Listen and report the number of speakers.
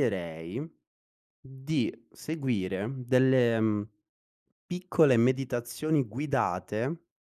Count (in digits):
1